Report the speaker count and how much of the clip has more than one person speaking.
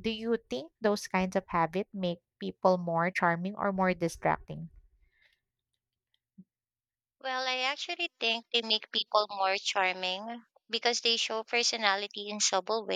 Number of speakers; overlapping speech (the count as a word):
two, no overlap